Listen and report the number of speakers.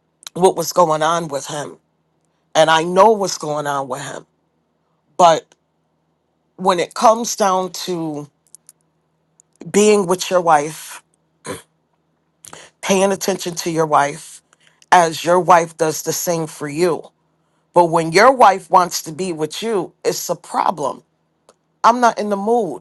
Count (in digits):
1